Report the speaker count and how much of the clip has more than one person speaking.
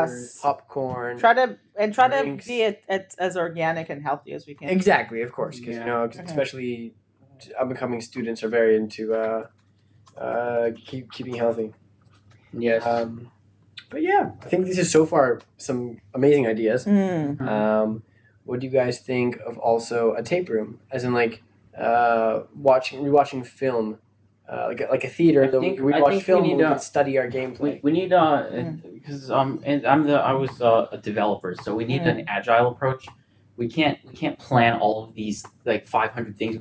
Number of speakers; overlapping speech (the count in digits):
3, about 11%